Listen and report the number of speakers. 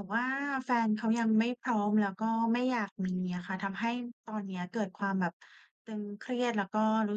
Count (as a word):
one